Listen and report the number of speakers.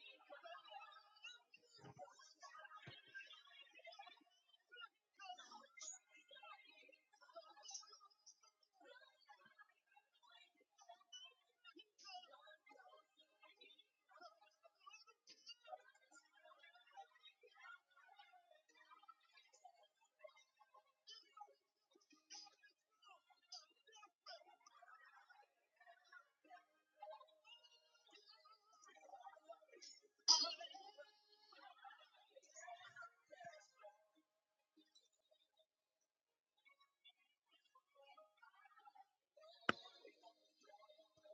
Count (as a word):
zero